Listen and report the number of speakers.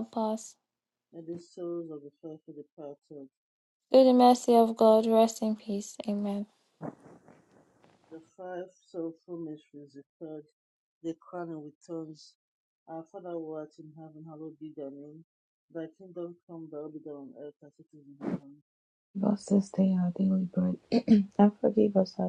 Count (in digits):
3